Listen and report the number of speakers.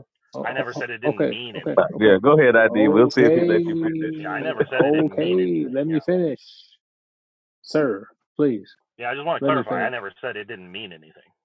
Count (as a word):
three